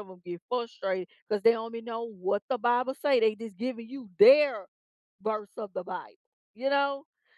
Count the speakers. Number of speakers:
1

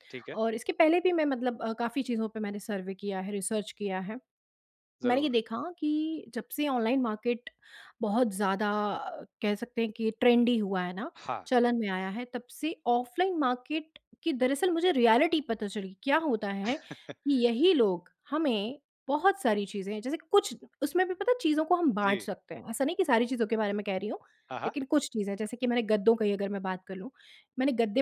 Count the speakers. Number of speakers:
2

